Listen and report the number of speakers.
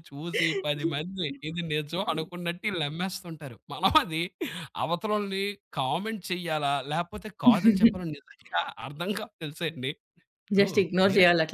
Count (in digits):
2